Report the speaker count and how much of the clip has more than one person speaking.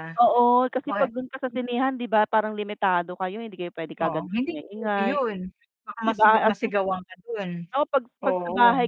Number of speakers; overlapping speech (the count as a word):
two, about 30%